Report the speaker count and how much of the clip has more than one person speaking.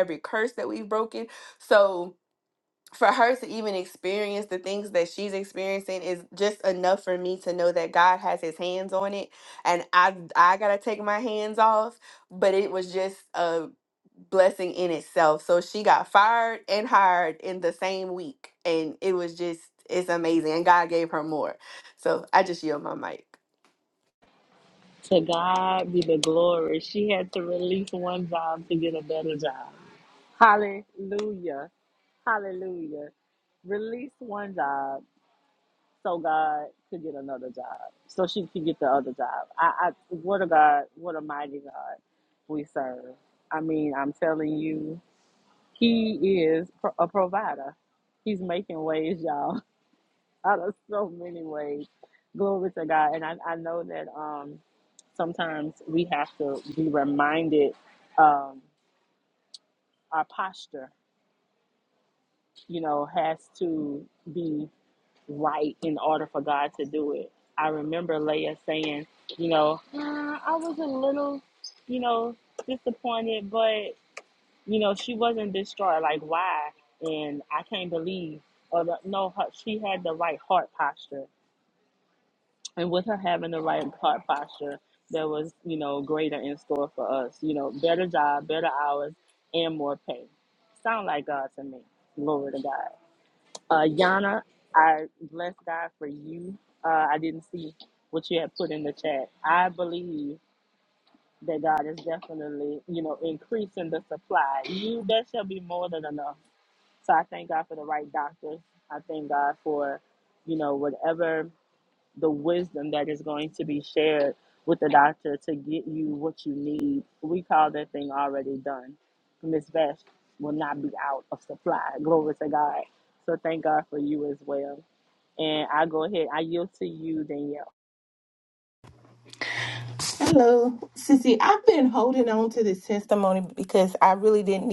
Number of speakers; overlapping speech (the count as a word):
three, no overlap